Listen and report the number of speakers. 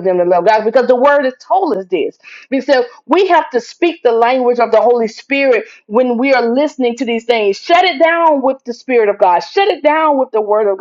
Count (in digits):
1